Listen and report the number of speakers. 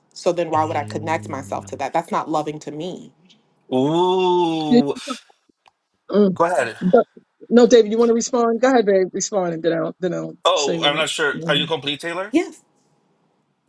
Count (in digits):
3